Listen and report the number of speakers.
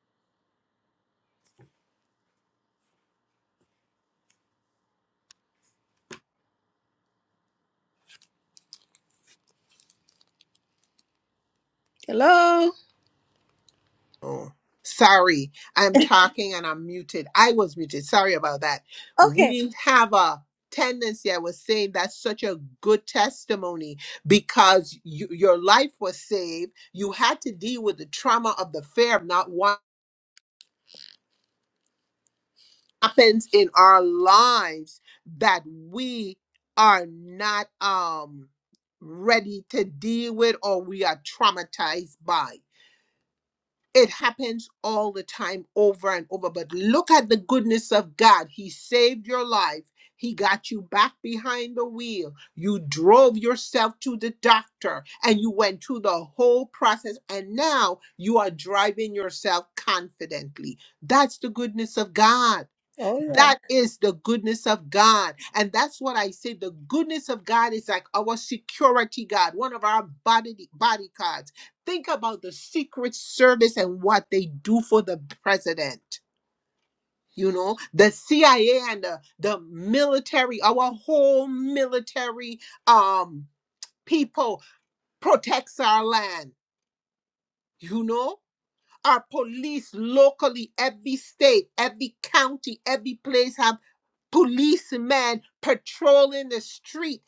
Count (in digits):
2